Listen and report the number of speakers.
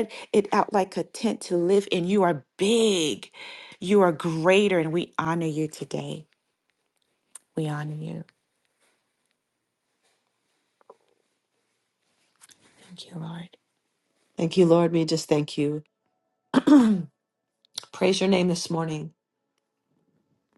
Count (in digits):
2